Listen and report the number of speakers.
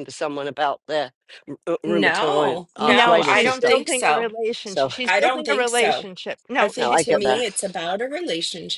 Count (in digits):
3